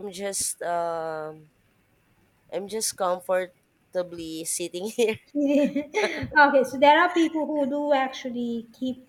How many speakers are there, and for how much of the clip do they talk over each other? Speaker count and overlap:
two, no overlap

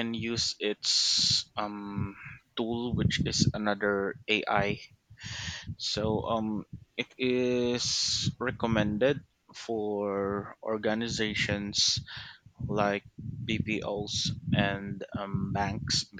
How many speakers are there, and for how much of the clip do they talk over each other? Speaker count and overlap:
one, no overlap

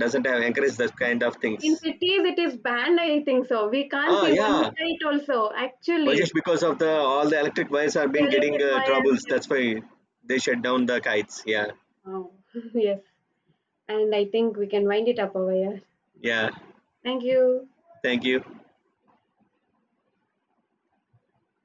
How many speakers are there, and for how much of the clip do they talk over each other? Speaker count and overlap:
two, about 10%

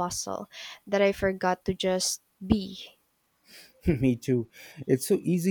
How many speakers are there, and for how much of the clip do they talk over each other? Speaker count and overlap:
two, no overlap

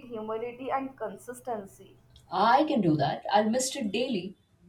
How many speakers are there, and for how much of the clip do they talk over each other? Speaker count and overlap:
two, no overlap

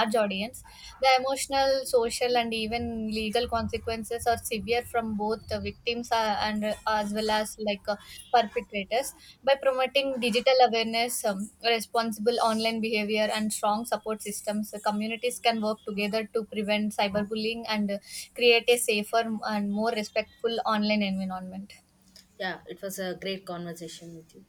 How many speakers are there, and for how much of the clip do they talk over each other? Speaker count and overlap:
two, no overlap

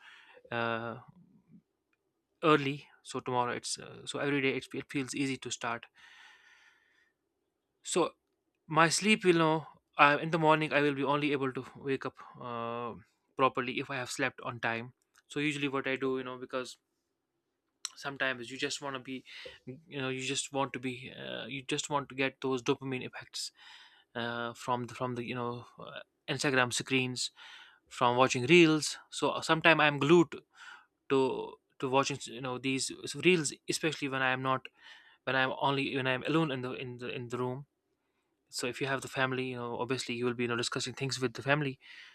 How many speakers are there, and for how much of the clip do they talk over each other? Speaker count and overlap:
one, no overlap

